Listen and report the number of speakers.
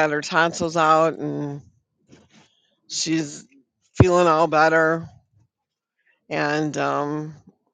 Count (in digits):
1